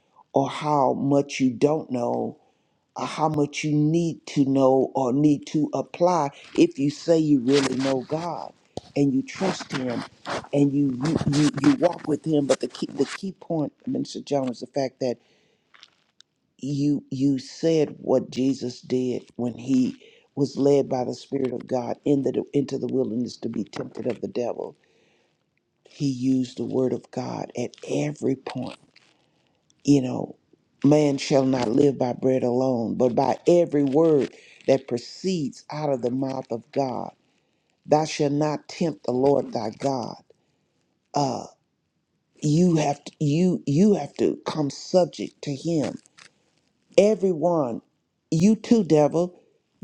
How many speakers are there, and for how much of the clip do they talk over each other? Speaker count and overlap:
1, no overlap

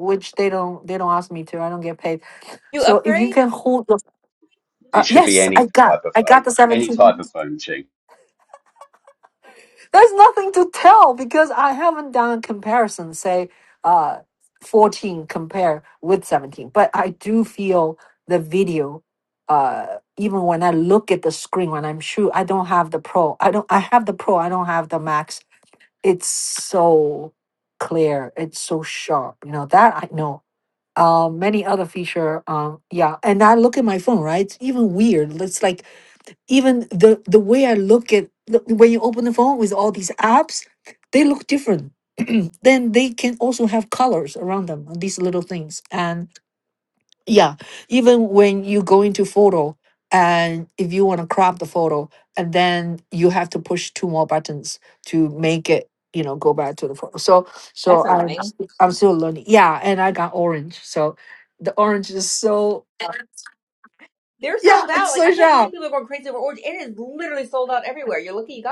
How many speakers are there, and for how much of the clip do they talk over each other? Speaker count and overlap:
3, about 7%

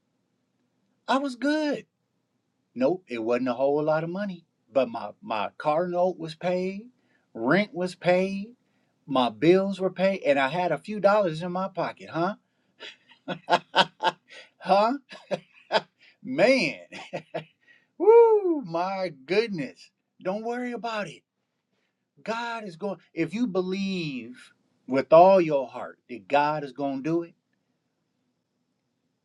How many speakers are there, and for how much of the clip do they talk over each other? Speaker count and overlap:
1, no overlap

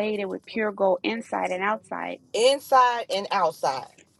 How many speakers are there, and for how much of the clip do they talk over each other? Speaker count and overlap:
2, no overlap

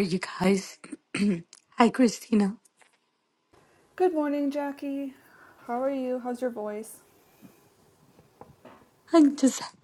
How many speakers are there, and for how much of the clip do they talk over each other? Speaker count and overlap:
2, no overlap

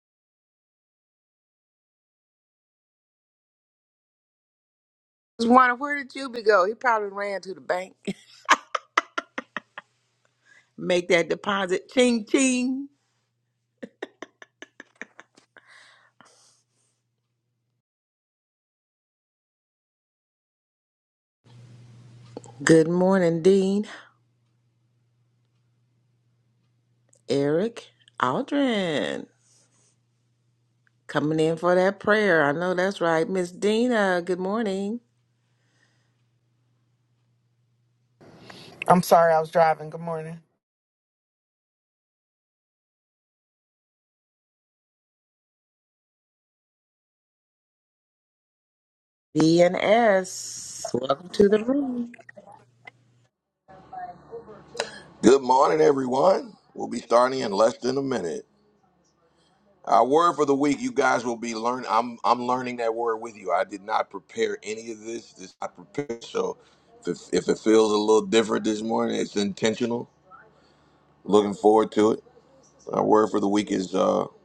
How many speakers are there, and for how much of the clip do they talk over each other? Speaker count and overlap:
3, no overlap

